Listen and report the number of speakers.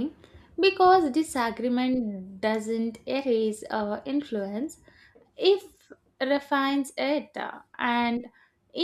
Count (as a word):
one